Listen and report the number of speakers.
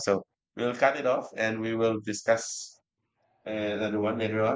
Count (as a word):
one